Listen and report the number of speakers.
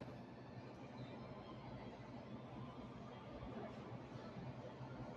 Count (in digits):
0